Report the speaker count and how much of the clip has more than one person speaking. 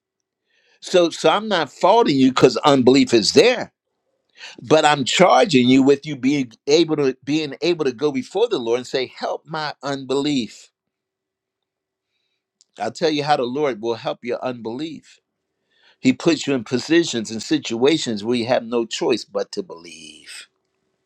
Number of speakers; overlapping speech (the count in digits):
1, no overlap